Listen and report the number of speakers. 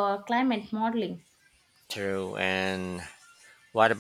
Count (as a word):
two